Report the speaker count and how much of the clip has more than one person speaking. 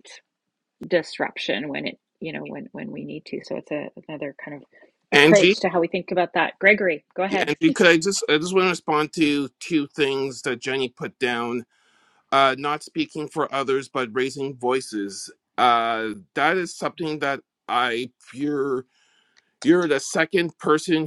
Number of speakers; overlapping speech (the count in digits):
2, about 3%